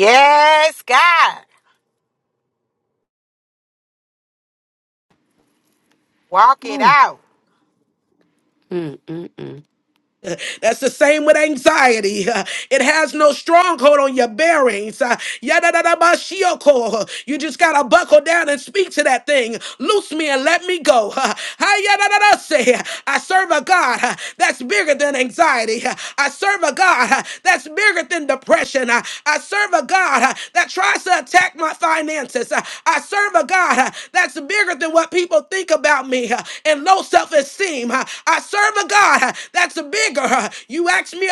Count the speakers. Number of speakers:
three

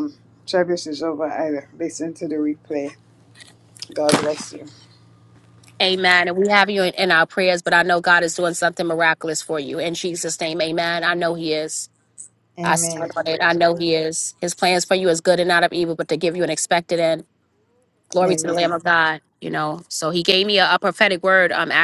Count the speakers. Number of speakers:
two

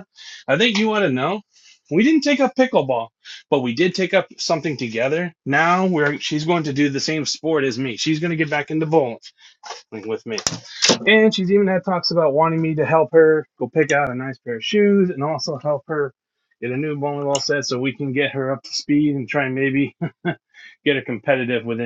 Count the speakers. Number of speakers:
one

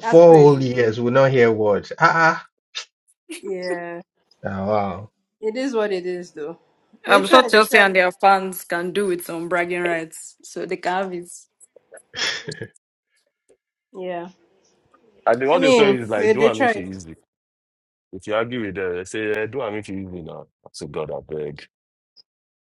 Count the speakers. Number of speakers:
four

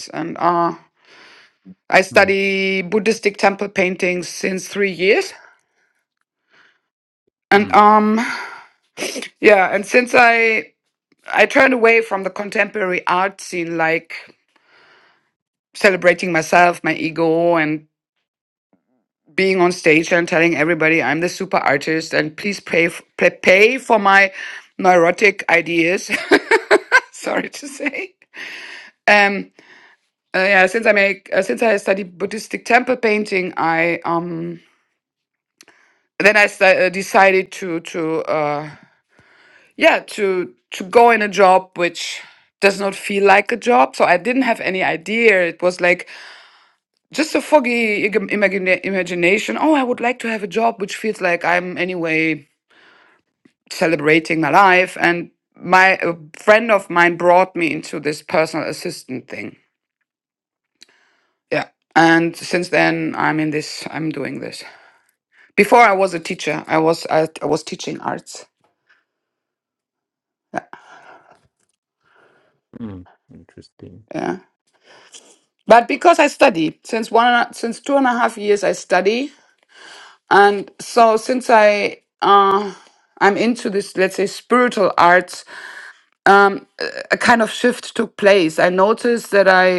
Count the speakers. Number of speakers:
two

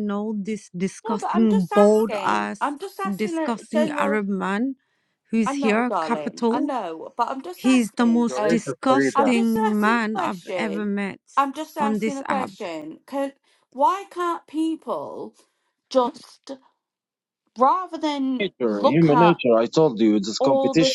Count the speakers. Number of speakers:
three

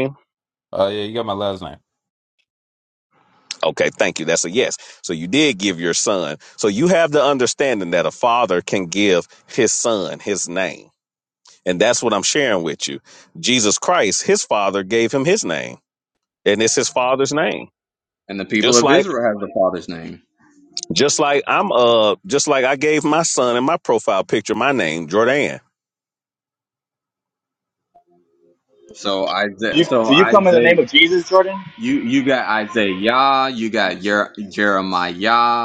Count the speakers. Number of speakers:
four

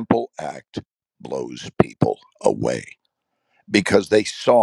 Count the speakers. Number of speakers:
one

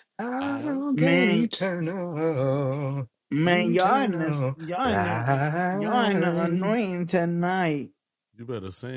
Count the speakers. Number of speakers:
three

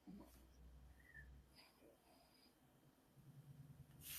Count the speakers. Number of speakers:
zero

